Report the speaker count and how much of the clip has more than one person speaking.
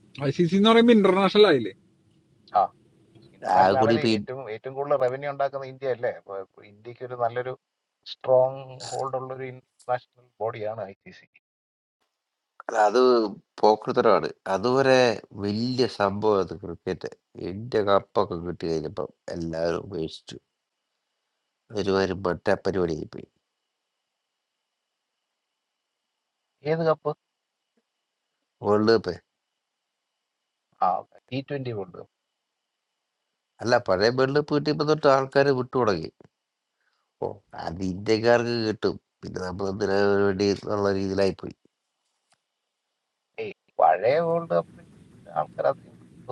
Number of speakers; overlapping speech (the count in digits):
3, about 1%